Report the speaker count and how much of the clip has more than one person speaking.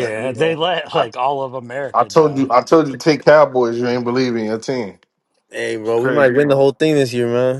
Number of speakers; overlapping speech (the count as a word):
three, about 24%